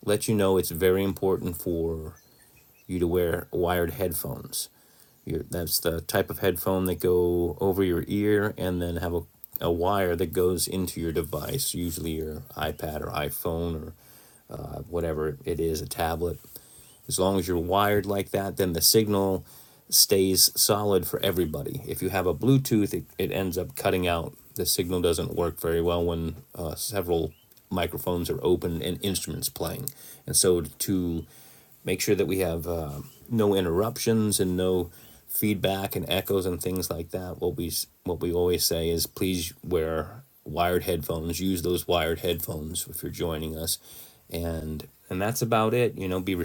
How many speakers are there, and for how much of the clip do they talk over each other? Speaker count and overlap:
1, no overlap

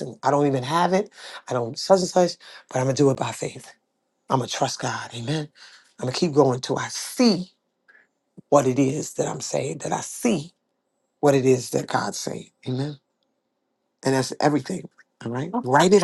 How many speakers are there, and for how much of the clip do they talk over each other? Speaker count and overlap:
1, no overlap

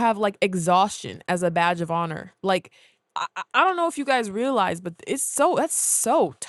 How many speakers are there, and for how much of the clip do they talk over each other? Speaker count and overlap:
1, no overlap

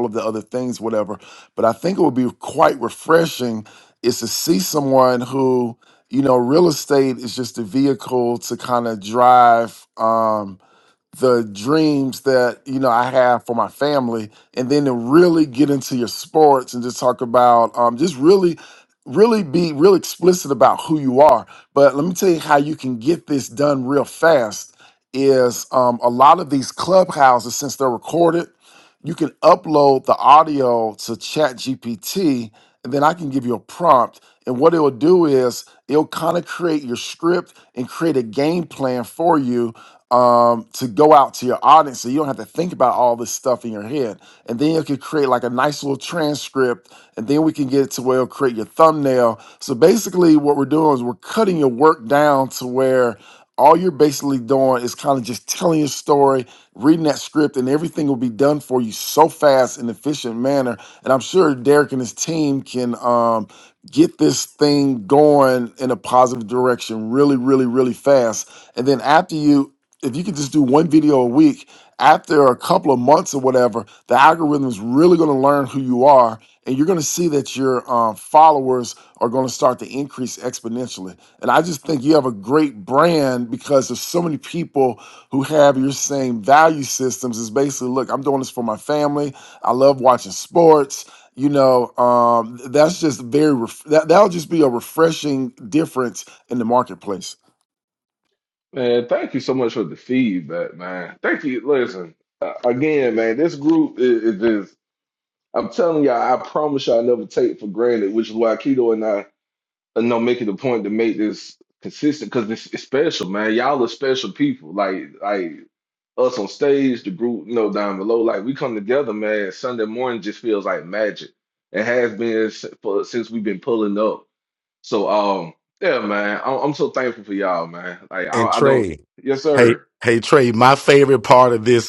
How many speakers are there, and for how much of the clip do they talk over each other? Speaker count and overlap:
3, about 1%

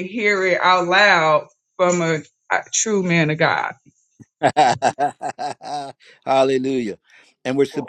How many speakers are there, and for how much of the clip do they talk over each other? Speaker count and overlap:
2, no overlap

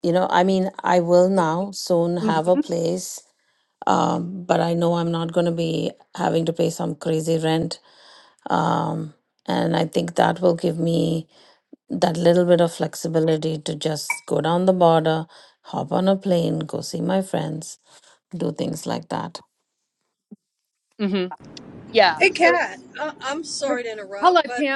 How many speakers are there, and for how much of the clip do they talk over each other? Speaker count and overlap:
3, about 6%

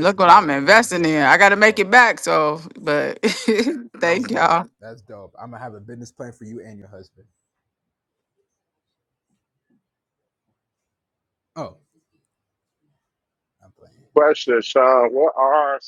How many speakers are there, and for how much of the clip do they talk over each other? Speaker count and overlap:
3, about 15%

